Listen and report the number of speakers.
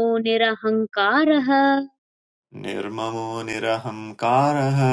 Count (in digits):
2